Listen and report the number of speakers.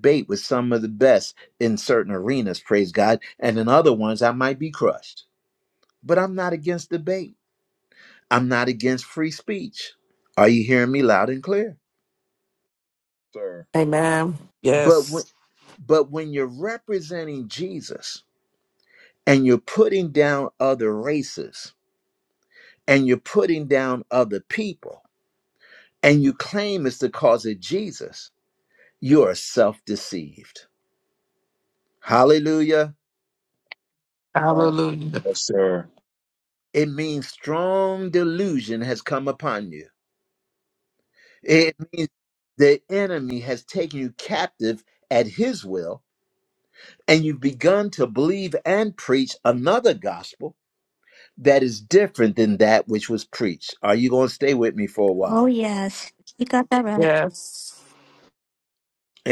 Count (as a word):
four